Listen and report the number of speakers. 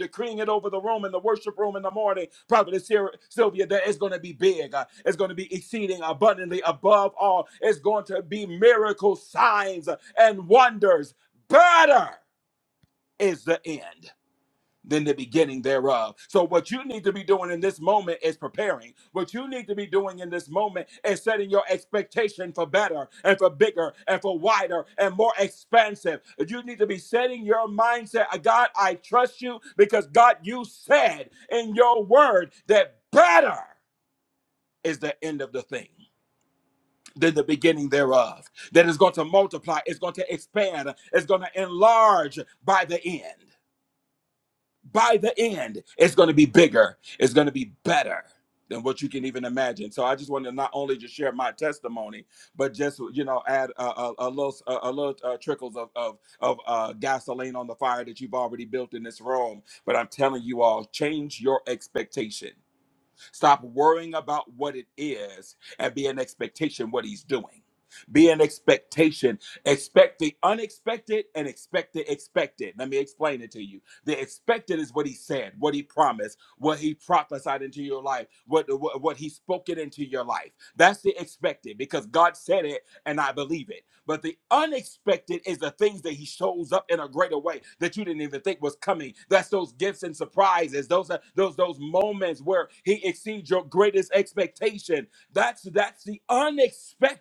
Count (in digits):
1